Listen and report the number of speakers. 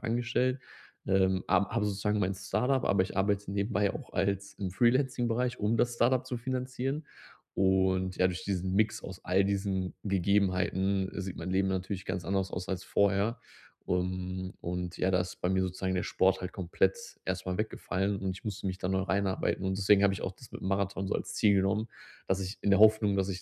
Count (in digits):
1